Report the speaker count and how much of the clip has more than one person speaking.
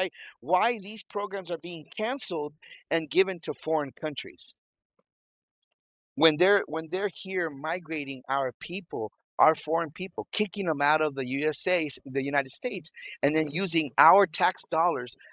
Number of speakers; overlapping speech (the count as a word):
one, no overlap